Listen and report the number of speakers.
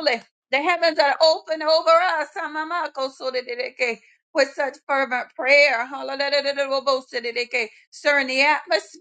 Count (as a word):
one